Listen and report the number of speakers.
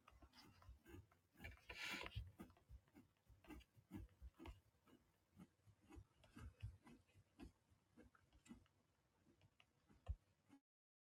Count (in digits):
0